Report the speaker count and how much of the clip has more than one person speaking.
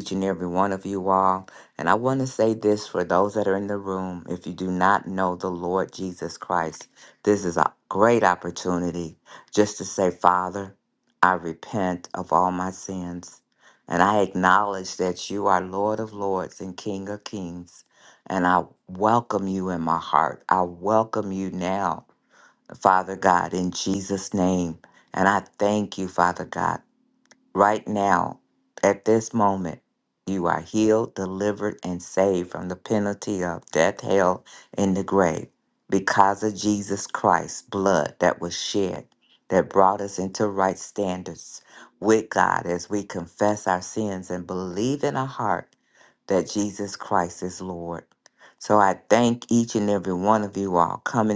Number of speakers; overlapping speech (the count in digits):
1, no overlap